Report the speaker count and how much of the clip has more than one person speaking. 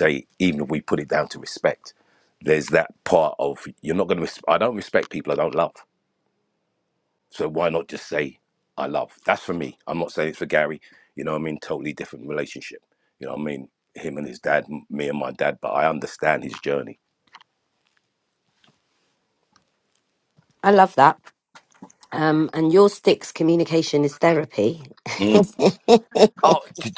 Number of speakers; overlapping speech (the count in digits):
2, no overlap